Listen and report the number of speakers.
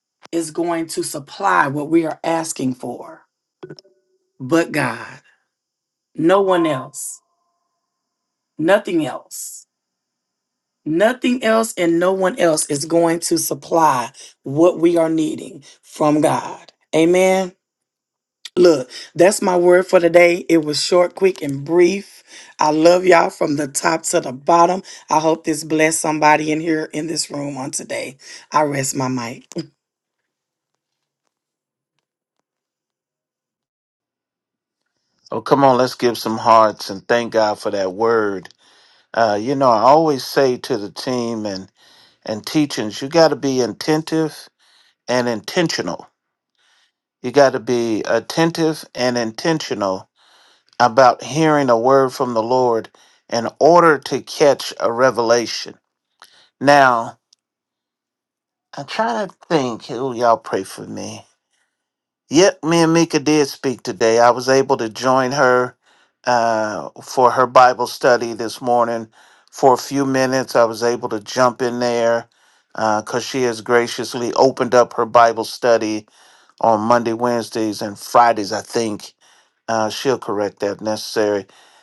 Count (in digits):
2